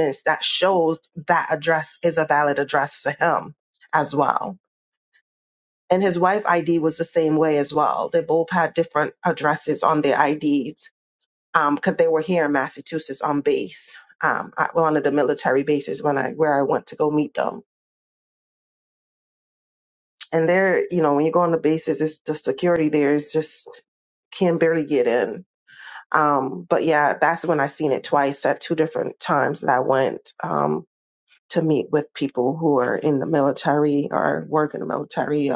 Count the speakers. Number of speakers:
one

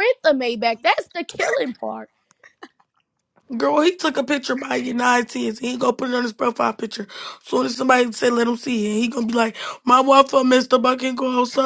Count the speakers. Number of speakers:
two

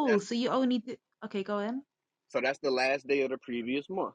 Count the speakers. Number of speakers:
two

